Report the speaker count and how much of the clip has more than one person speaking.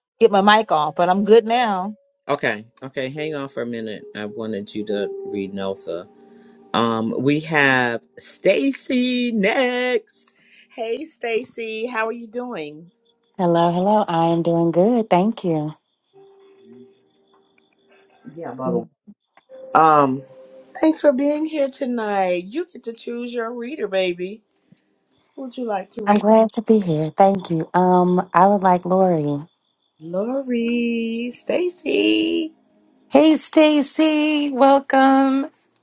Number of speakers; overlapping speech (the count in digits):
4, under 1%